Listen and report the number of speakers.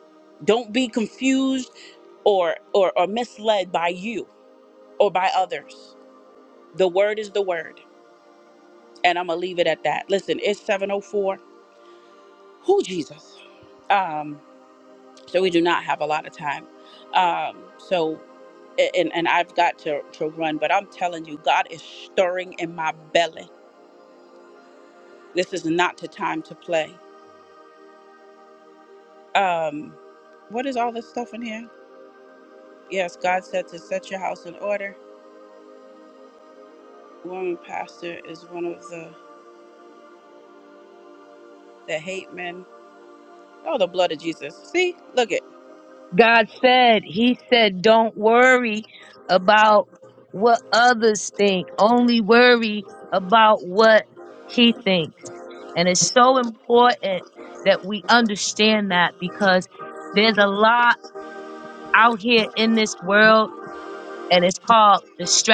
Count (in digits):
2